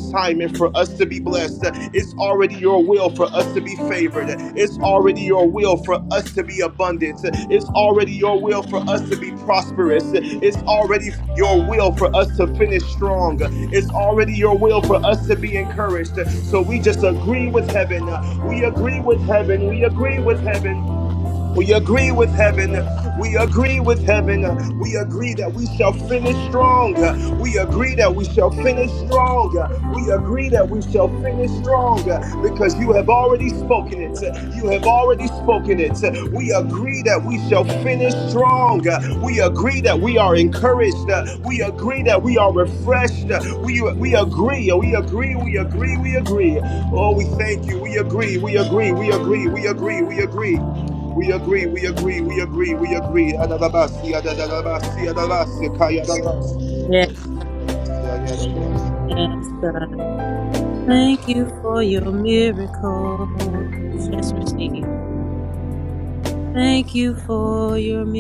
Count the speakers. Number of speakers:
two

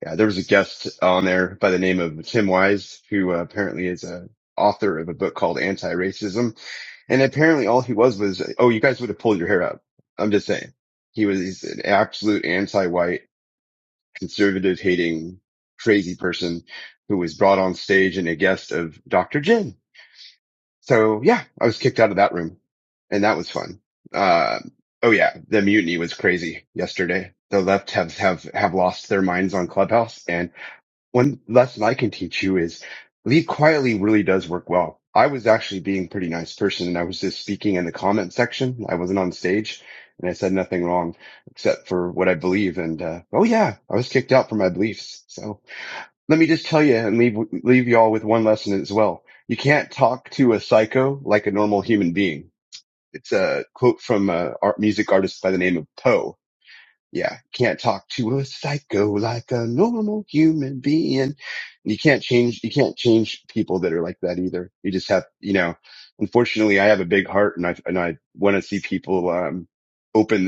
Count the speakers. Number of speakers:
one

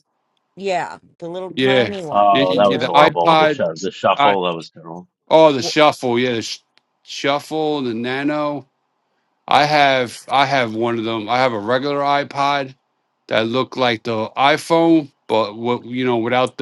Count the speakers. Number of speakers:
three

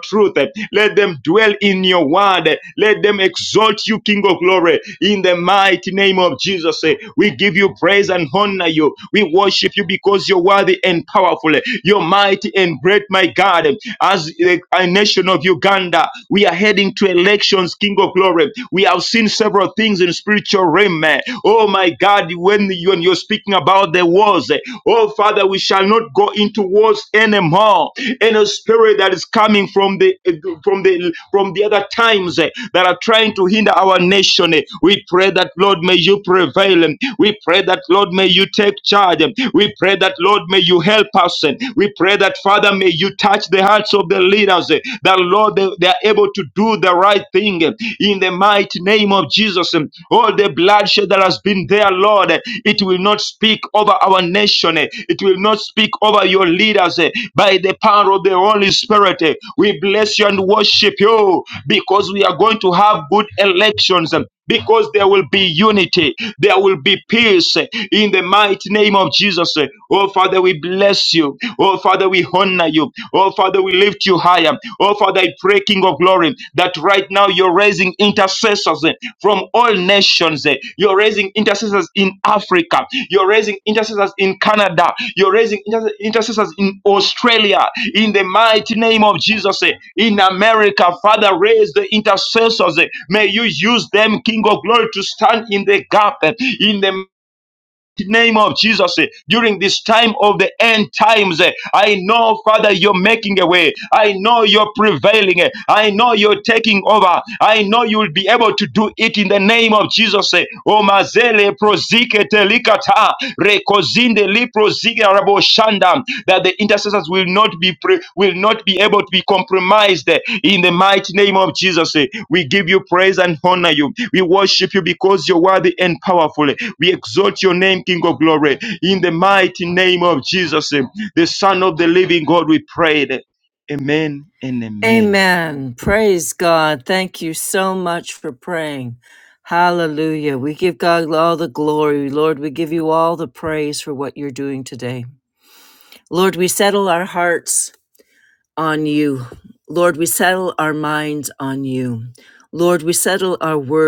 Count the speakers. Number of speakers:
two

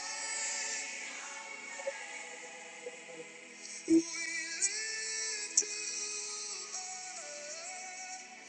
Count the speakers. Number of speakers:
zero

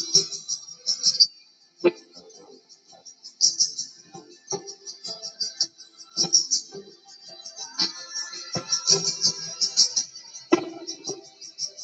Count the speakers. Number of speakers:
zero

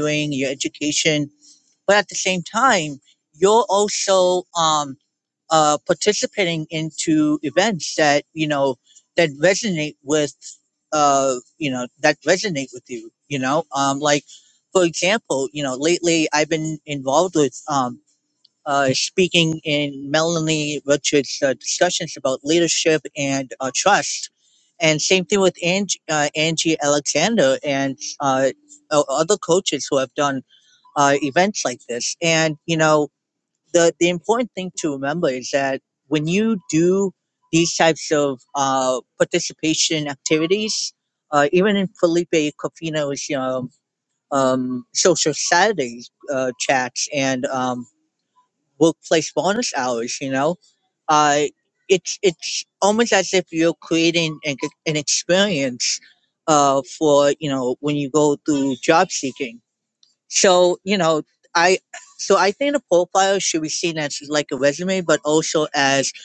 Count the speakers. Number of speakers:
one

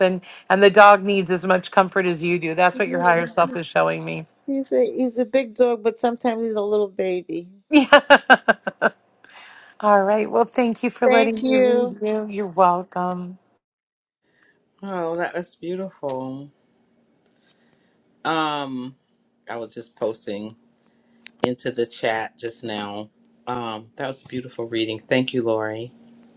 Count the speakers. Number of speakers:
three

